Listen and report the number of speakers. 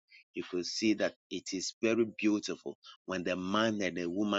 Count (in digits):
1